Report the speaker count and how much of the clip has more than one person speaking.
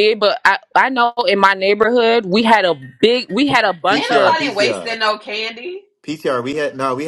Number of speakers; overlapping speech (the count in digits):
3, about 15%